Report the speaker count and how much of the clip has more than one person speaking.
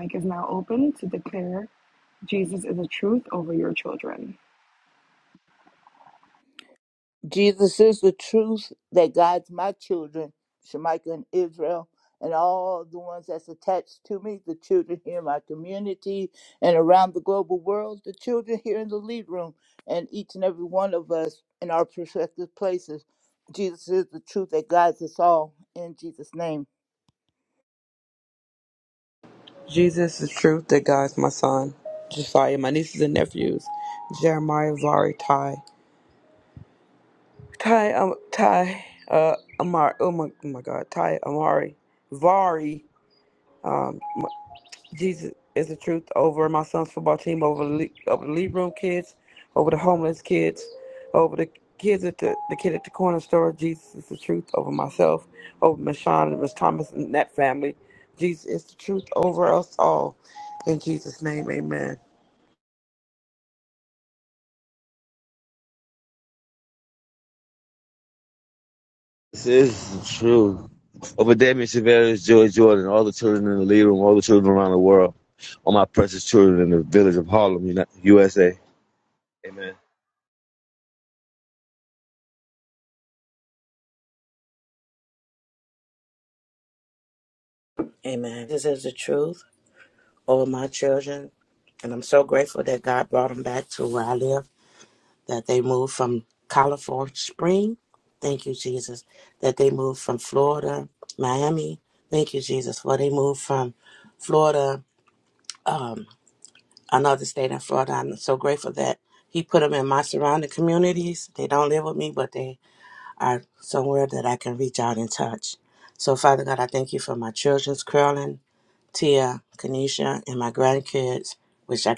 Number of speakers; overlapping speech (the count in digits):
5, no overlap